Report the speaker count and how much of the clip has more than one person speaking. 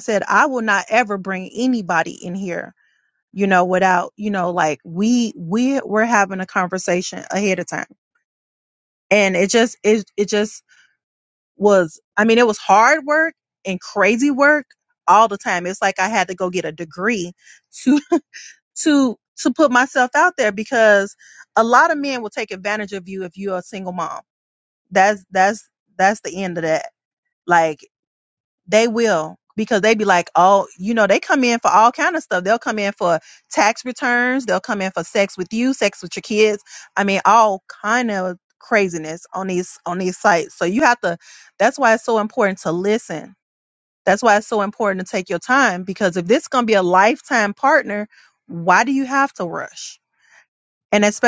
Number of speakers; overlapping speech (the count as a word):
one, no overlap